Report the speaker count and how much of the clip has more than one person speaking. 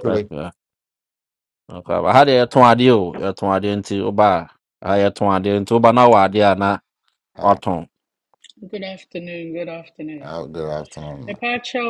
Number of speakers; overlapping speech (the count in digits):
3, about 5%